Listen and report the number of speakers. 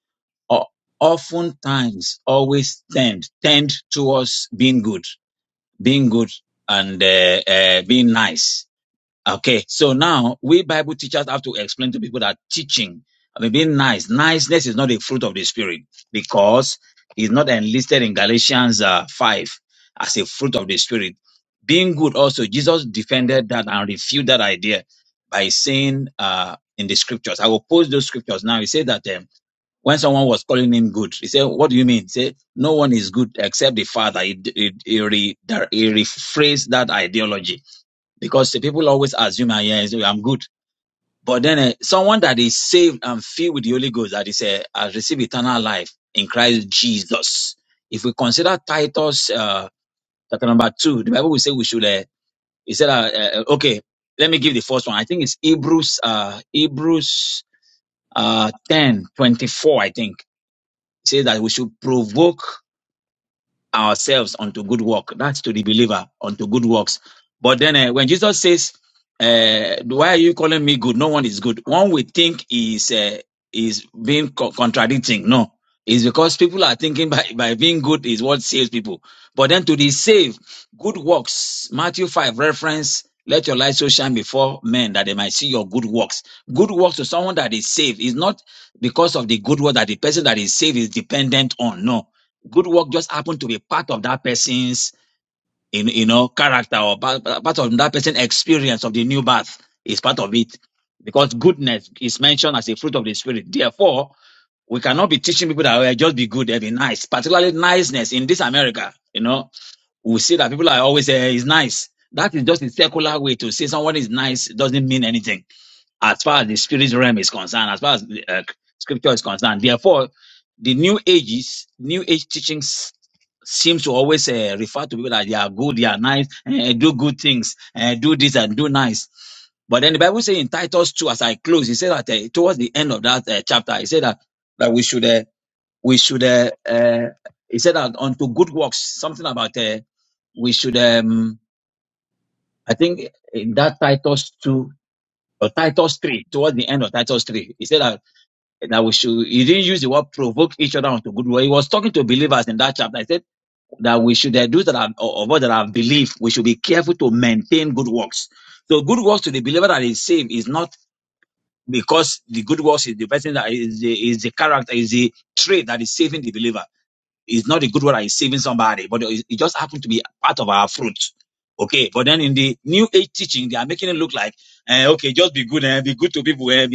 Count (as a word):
one